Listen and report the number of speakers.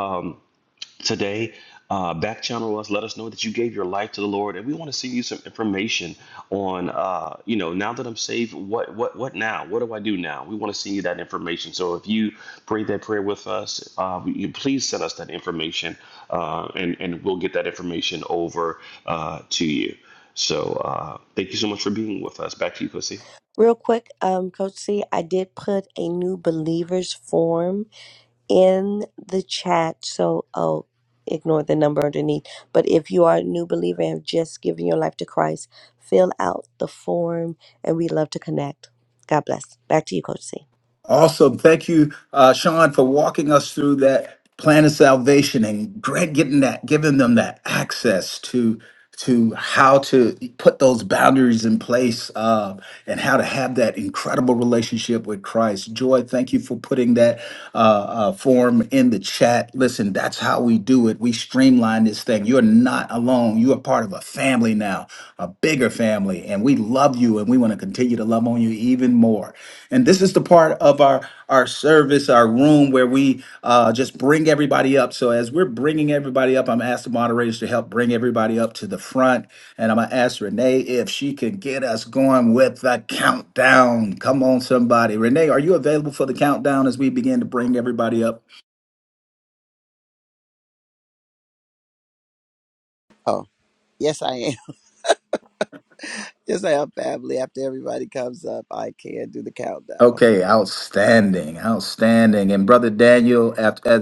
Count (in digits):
4